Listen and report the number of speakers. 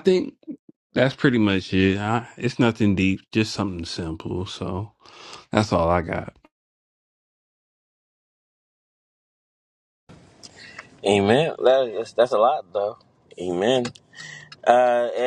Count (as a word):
two